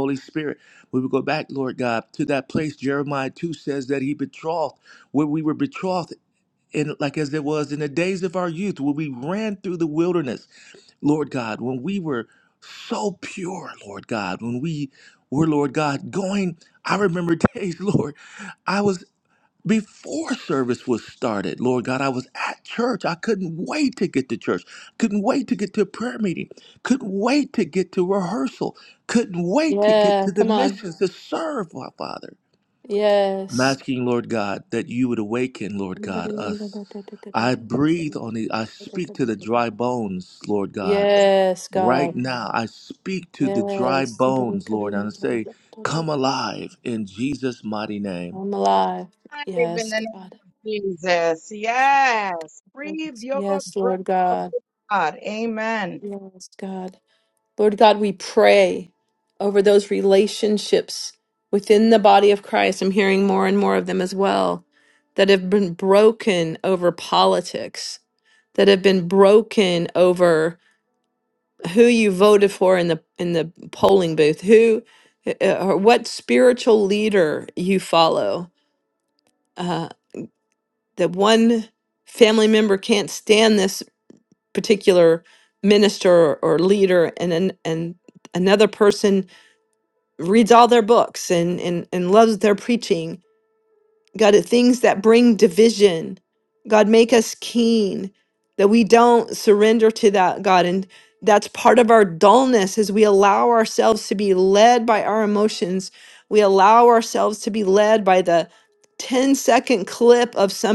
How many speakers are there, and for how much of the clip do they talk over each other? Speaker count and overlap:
three, about 4%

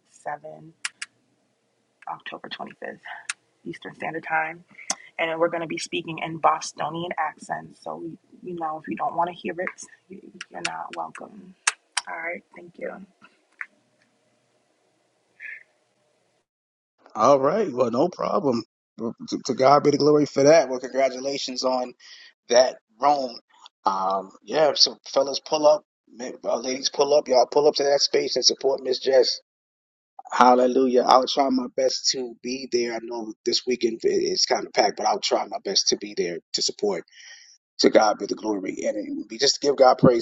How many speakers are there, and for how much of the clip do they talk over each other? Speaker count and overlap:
two, no overlap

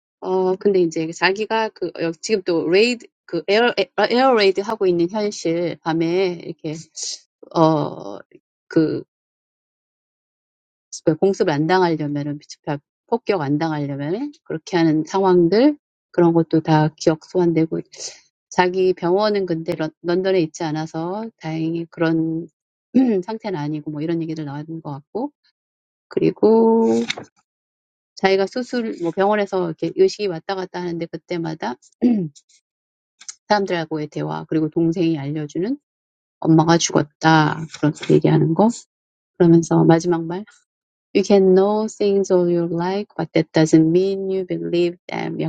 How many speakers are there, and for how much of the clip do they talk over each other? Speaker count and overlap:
one, no overlap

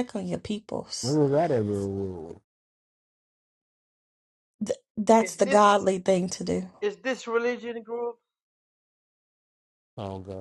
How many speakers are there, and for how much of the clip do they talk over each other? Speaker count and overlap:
three, about 5%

